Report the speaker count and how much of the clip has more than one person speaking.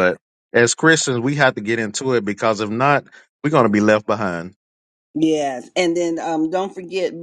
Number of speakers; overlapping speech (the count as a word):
two, no overlap